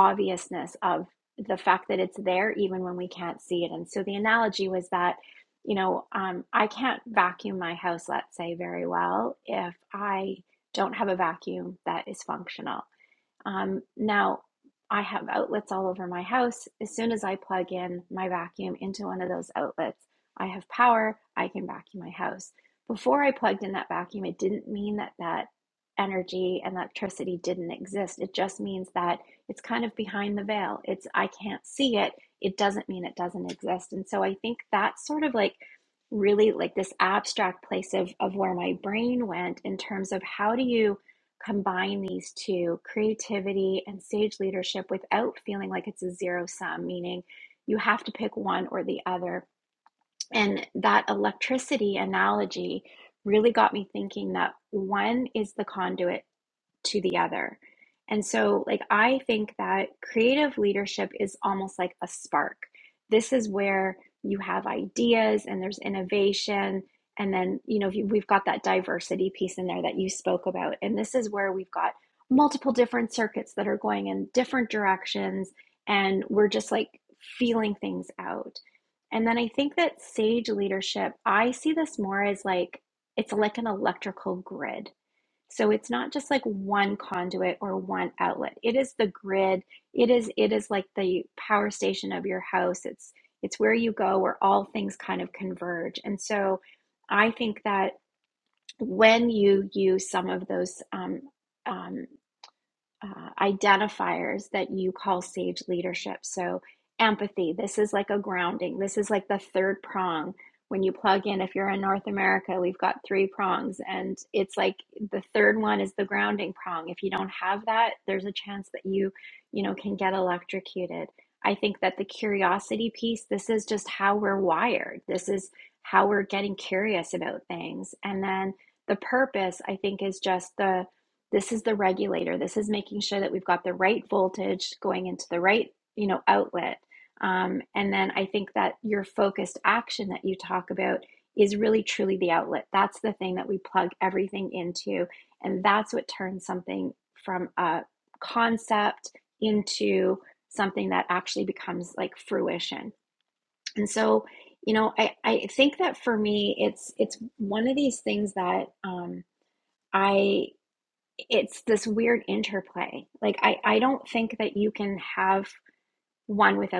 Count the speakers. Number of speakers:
one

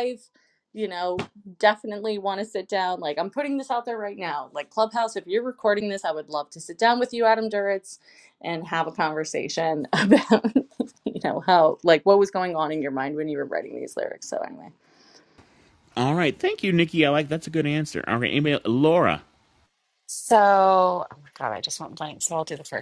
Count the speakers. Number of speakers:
three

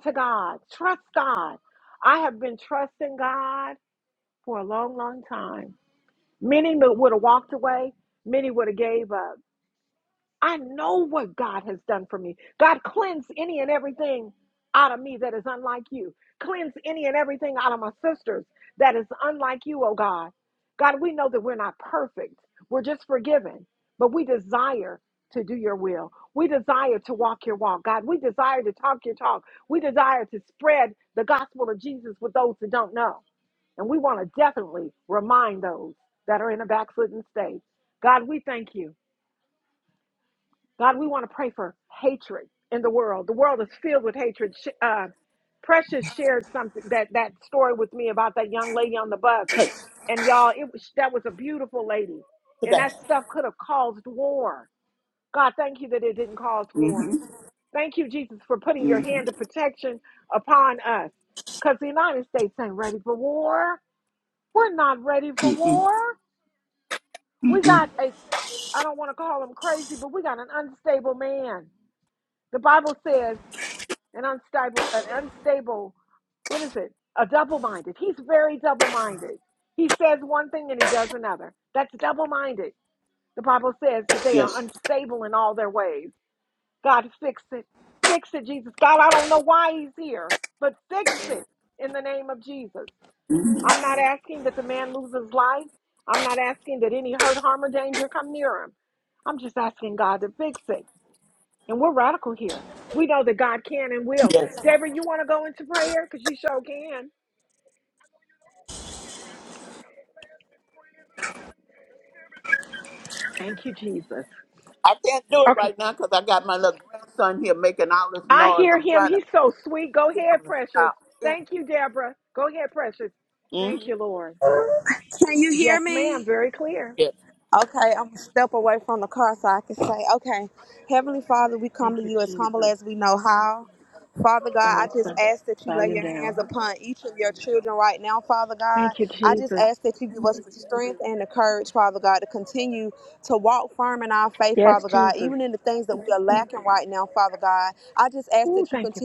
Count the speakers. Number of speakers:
three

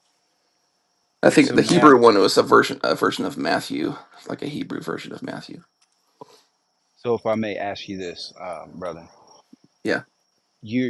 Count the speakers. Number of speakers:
two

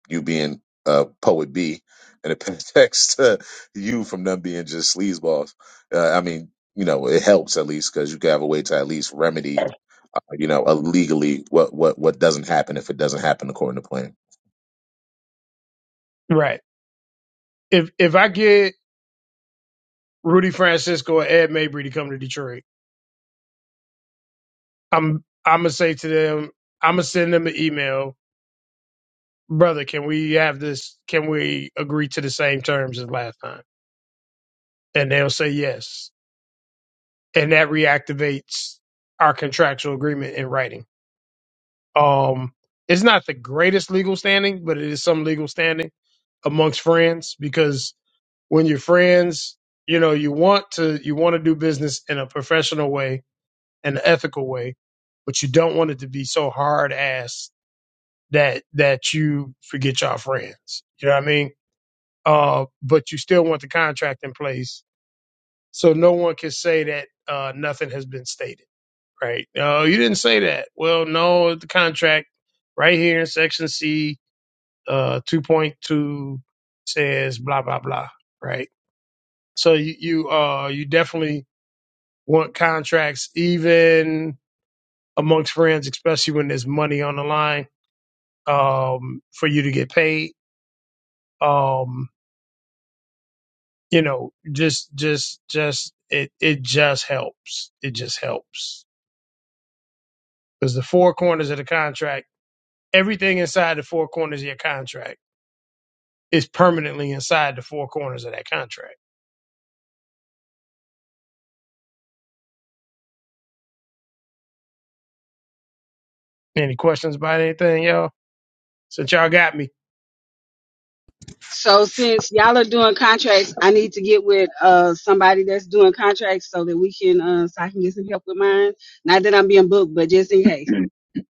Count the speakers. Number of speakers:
three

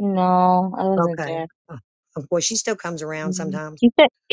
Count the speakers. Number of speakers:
two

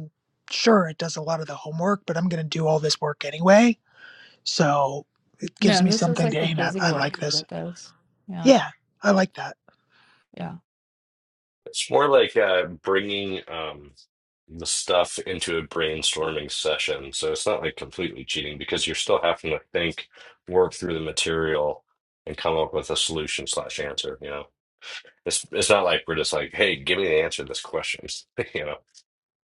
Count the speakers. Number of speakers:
three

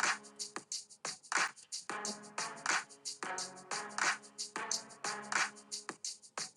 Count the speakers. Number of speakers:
zero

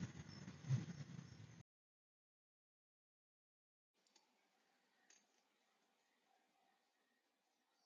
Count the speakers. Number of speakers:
zero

